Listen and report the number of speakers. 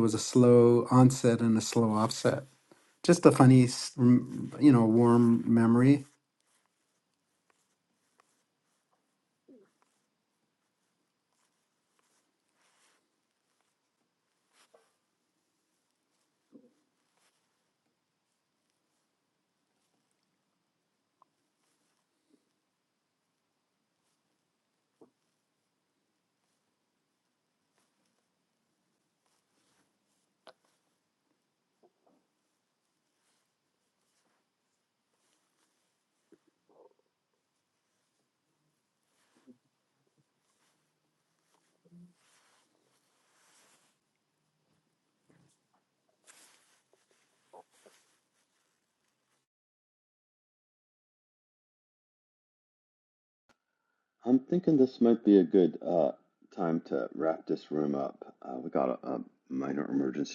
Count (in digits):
2